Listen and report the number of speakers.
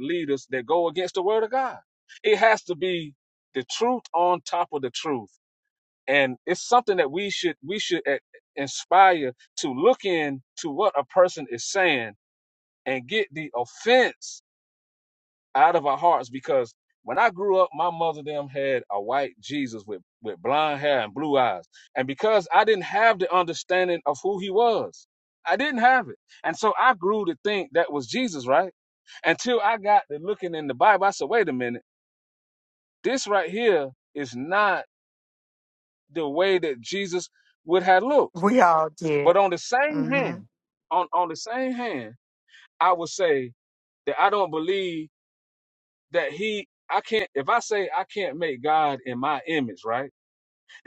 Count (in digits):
2